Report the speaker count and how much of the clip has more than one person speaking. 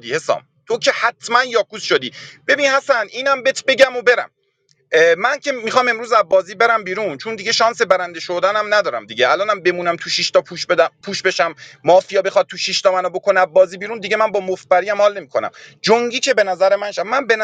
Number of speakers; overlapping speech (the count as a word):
one, no overlap